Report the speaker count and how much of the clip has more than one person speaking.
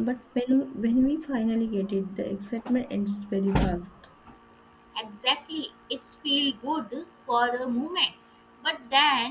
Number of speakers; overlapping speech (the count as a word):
two, no overlap